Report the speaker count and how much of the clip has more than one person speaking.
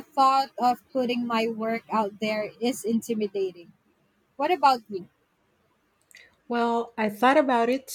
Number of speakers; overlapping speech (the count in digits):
2, no overlap